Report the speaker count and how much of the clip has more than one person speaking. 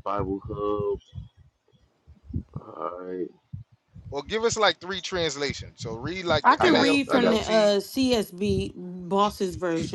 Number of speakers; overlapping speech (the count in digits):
3, about 13%